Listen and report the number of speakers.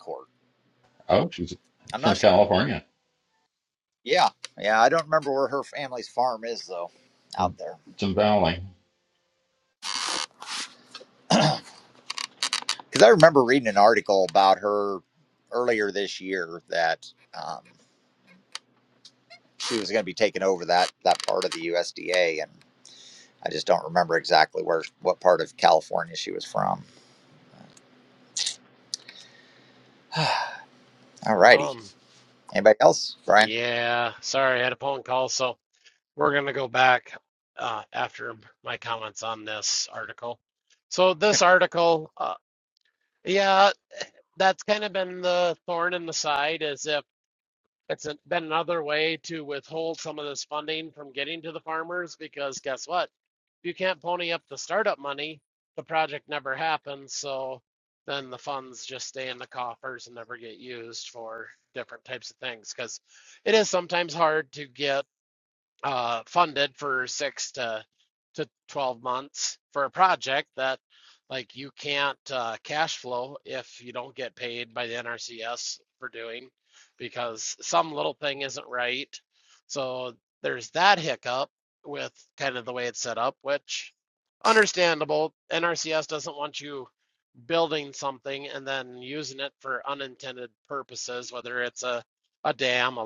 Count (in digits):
3